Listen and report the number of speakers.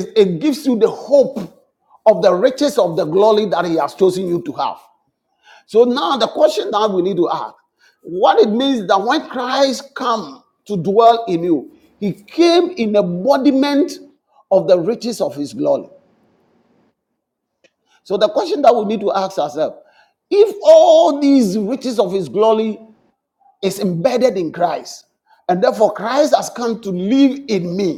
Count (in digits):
1